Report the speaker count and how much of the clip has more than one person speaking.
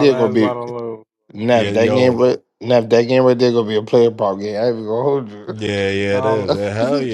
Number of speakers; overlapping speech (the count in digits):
3, about 26%